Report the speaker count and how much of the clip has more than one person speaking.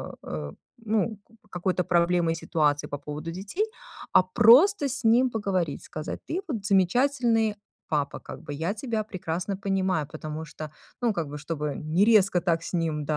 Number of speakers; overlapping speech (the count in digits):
1, no overlap